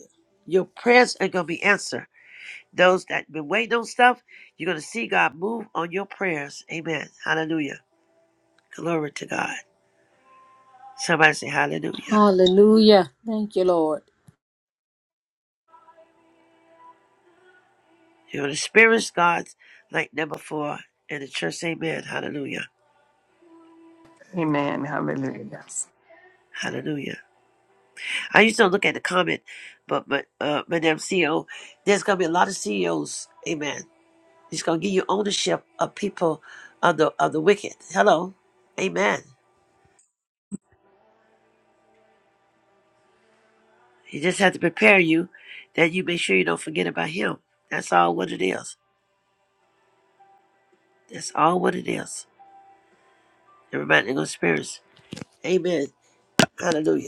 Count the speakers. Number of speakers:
three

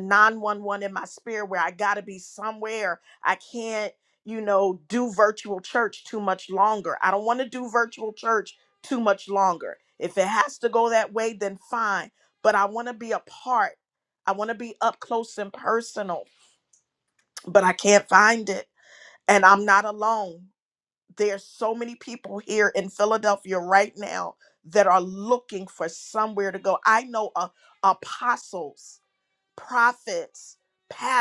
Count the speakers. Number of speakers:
one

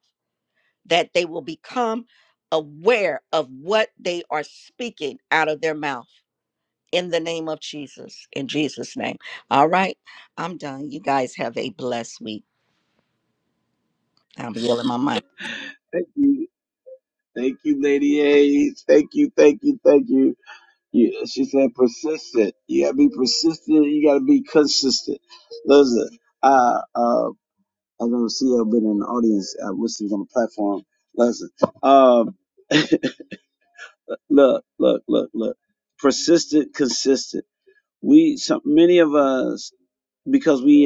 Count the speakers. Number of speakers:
two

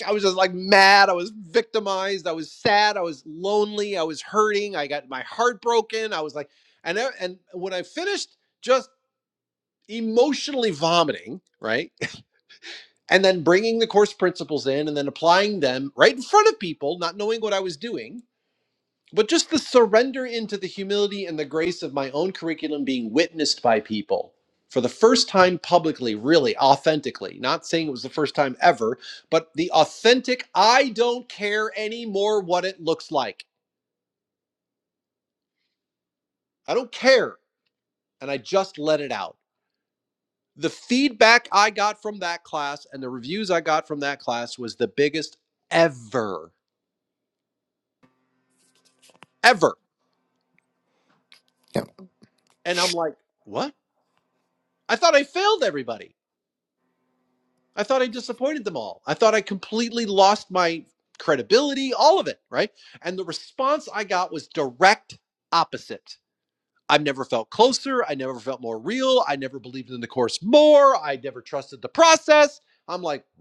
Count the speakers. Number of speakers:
one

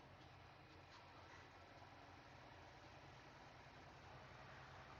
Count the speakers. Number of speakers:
zero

